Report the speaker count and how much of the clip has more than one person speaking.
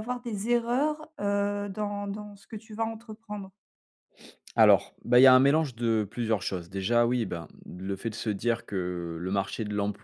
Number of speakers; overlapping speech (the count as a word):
two, no overlap